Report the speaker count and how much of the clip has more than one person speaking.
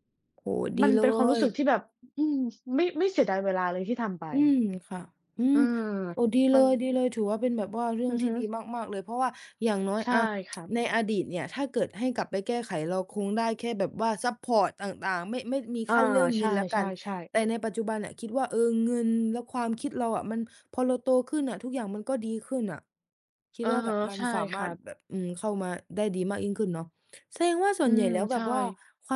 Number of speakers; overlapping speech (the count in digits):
2, about 12%